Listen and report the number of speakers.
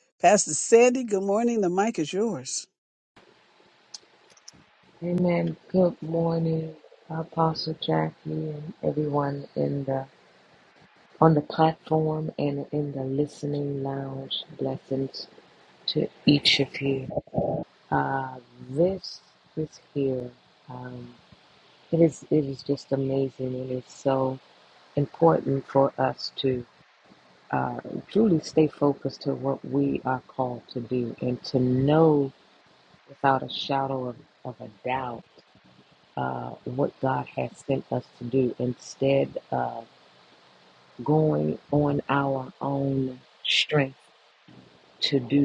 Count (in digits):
2